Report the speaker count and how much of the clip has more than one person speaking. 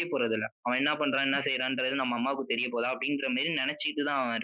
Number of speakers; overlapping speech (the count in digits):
1, no overlap